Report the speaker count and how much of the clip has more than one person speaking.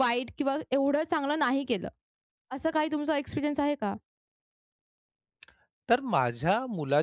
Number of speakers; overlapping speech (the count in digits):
2, no overlap